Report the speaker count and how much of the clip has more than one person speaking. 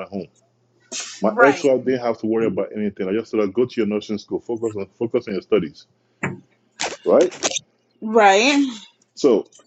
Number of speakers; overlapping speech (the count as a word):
two, about 4%